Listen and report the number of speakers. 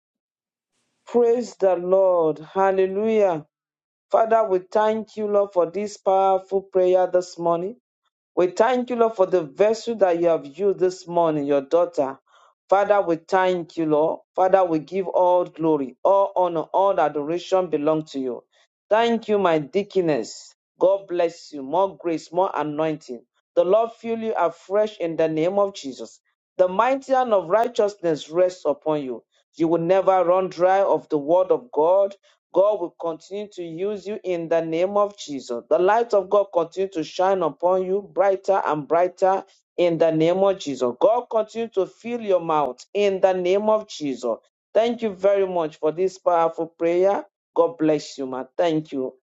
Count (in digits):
1